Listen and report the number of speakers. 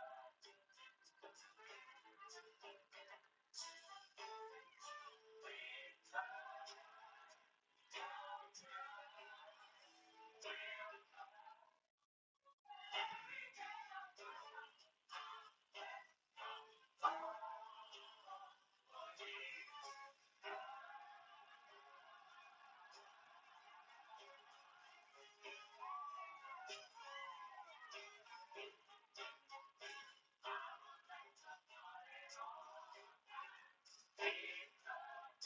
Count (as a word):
zero